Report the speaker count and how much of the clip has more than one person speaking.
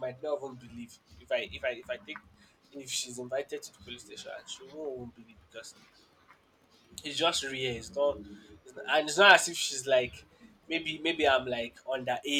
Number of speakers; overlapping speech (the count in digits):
1, no overlap